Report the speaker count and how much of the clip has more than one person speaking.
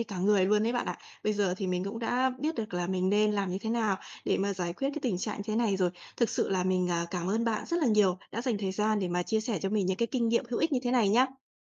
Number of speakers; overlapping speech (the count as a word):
one, no overlap